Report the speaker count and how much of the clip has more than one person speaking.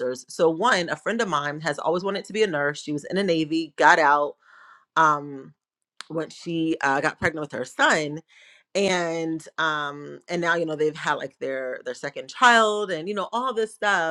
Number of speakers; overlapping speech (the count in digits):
1, no overlap